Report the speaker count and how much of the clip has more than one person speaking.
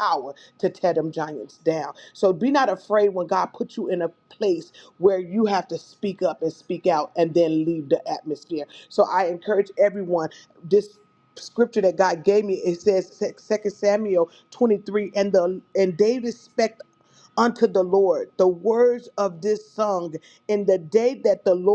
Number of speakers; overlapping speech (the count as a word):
one, no overlap